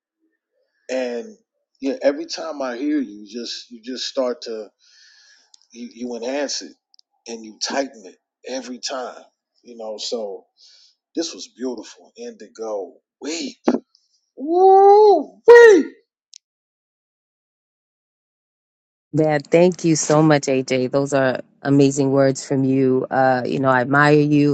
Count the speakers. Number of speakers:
2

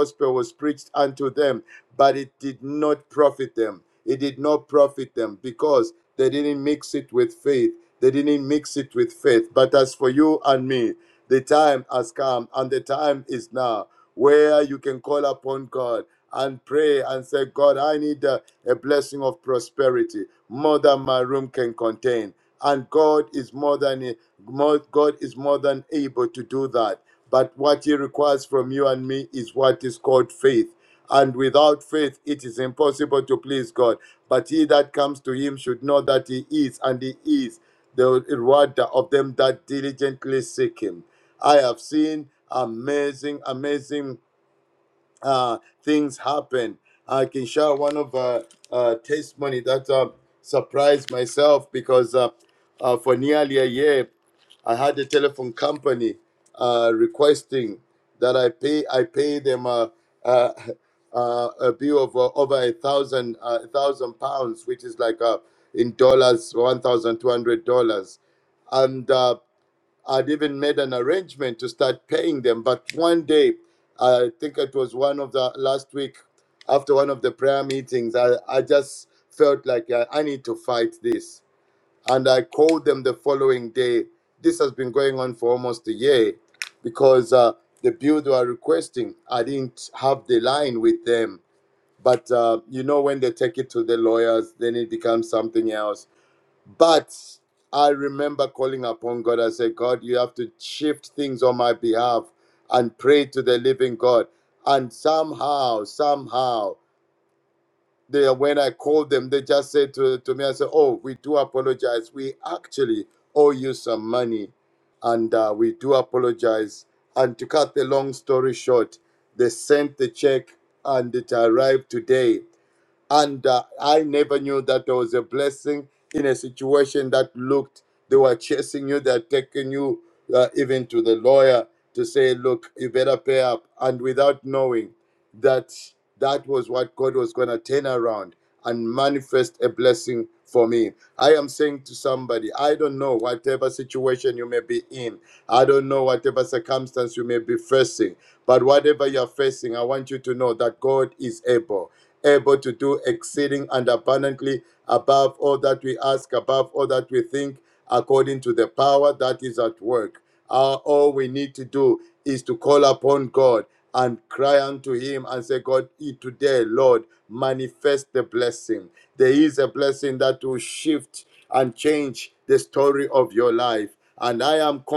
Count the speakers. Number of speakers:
1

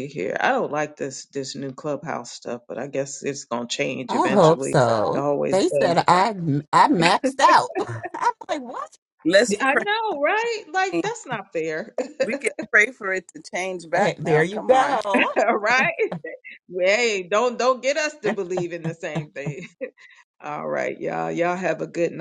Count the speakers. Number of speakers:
3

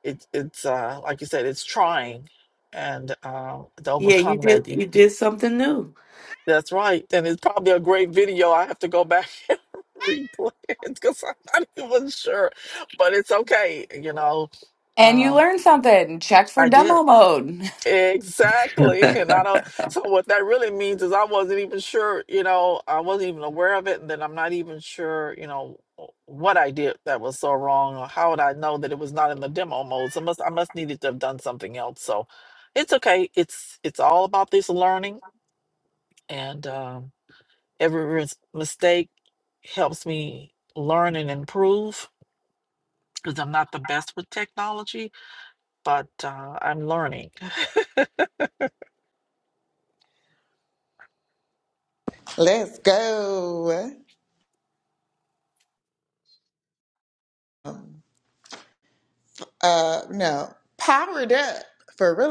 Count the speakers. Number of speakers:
4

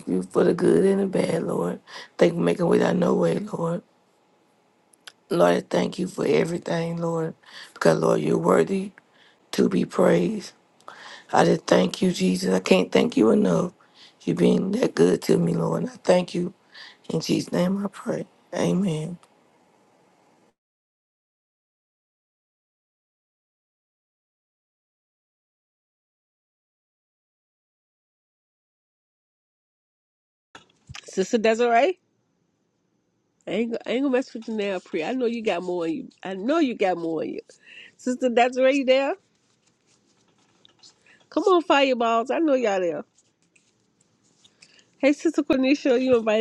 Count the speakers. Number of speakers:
2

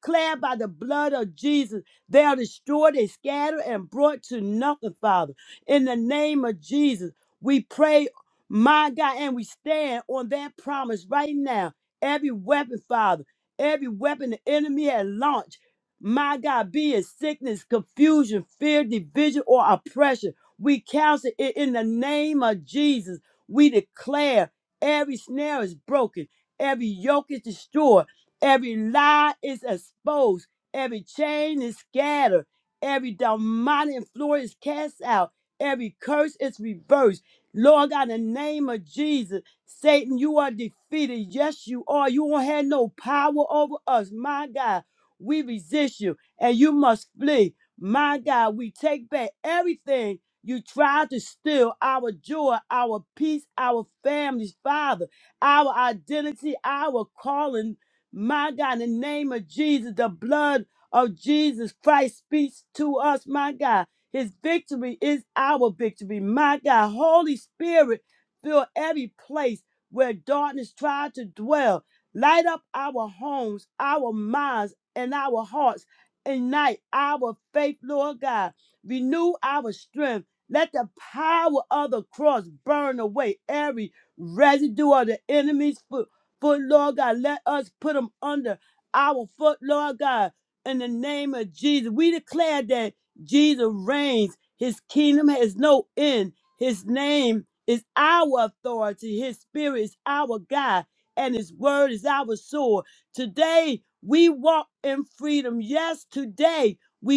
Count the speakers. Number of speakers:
1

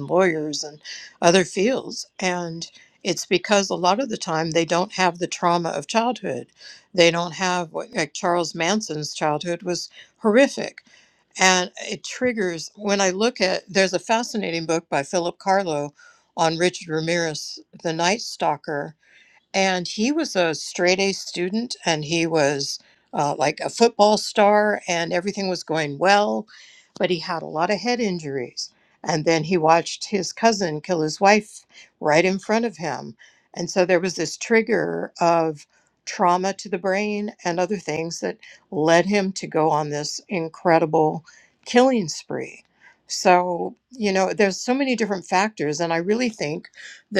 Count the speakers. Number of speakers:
1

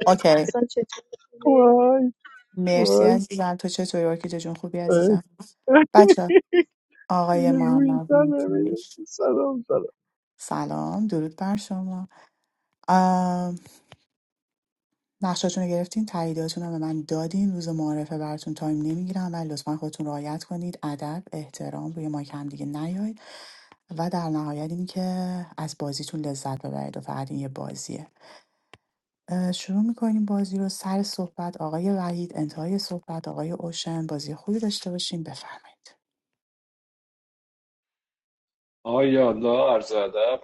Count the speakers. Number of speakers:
4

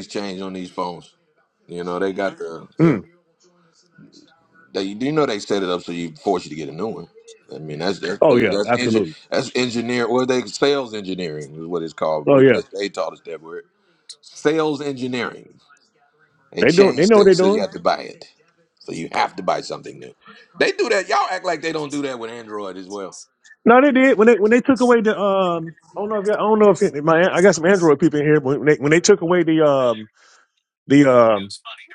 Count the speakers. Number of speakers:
2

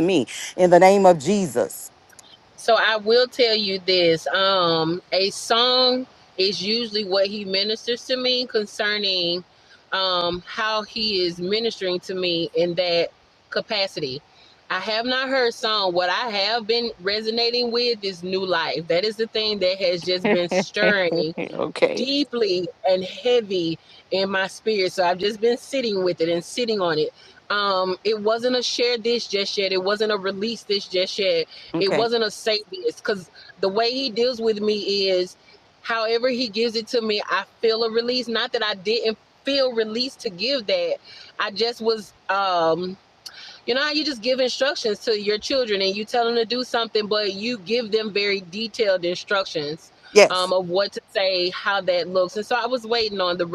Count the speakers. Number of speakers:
2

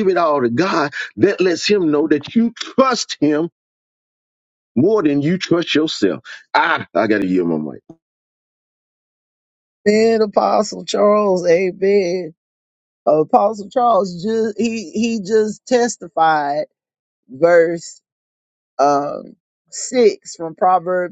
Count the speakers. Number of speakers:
2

